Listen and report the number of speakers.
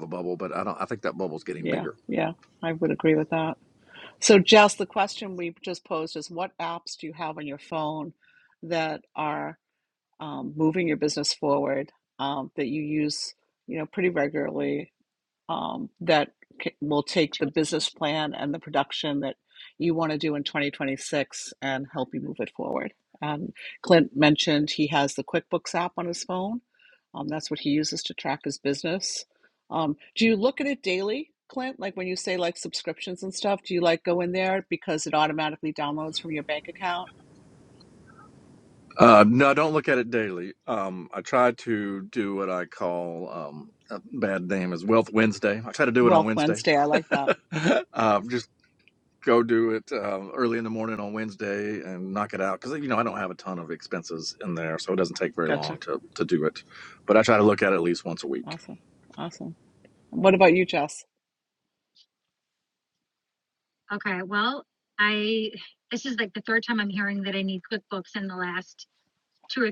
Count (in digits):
3